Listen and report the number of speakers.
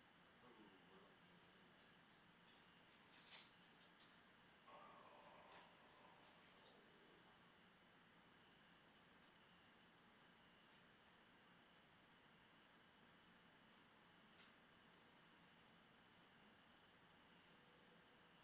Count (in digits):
1